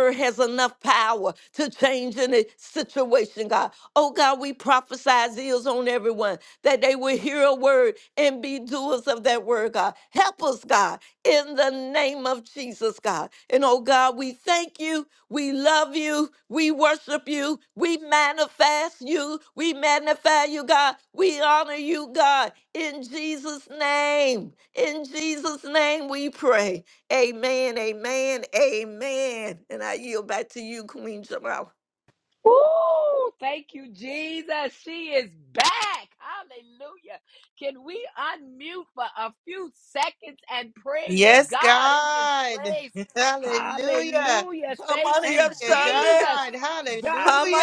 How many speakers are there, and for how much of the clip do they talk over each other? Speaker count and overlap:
three, about 9%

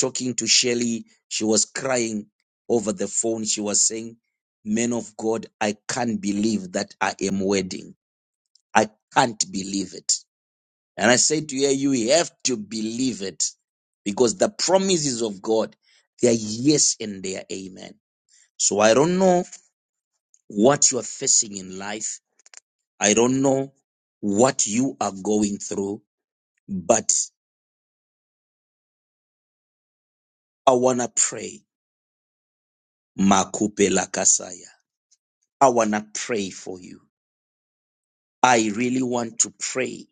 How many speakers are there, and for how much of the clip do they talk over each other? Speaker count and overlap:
one, no overlap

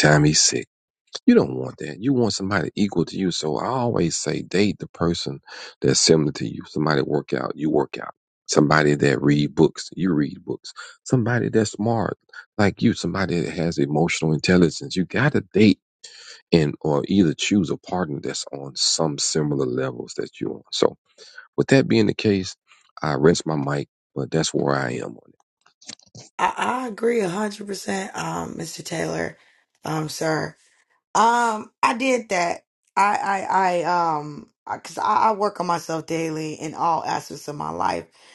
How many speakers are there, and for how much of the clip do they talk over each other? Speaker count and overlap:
two, no overlap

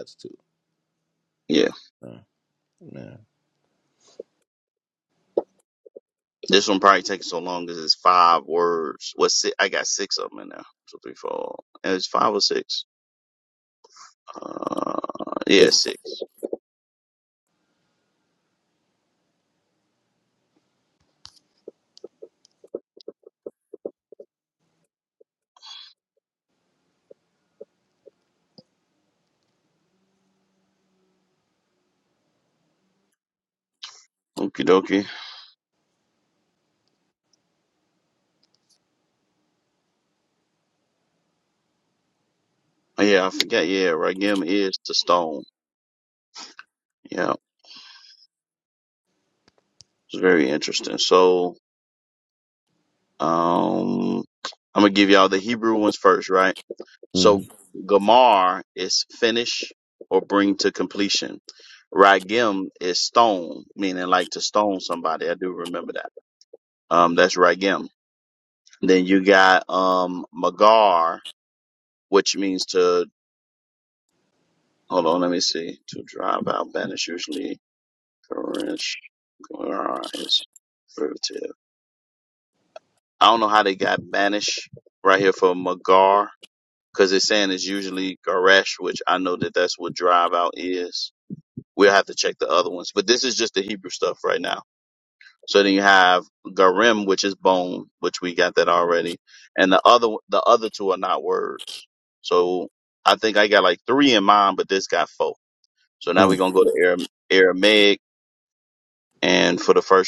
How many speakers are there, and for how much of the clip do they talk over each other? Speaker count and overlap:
two, about 1%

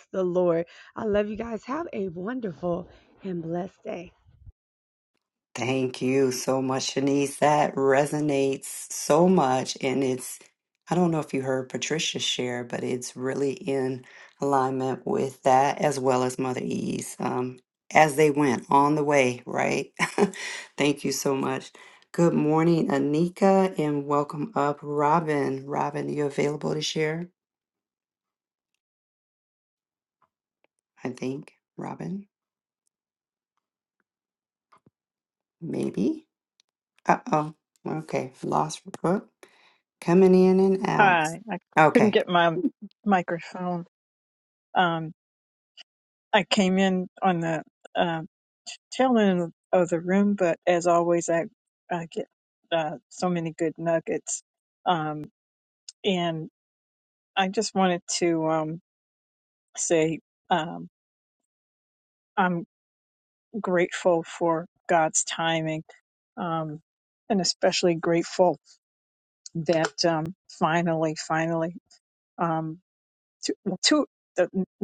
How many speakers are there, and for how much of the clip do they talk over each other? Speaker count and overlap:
three, about 1%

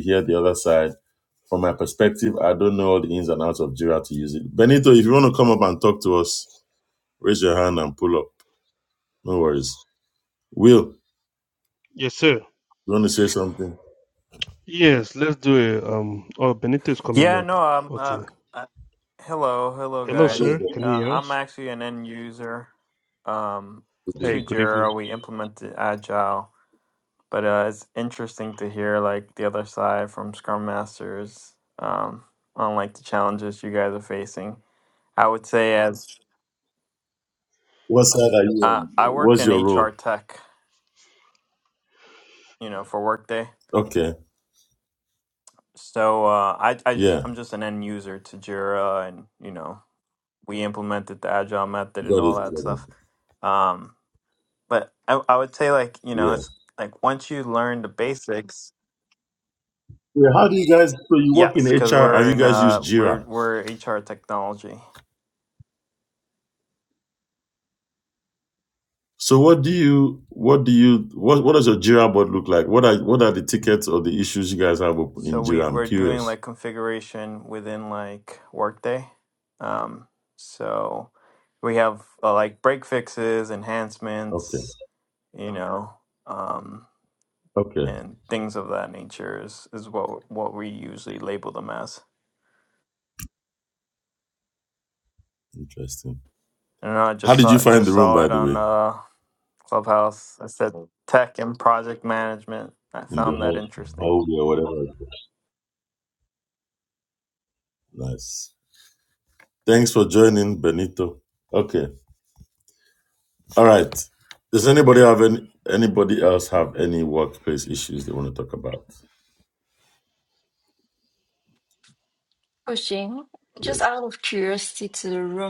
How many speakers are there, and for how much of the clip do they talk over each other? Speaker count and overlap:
four, about 8%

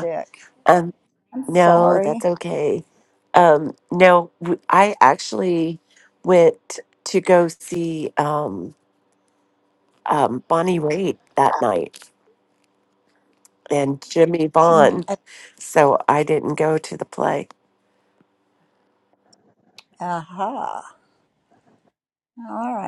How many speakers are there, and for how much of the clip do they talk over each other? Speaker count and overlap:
two, about 5%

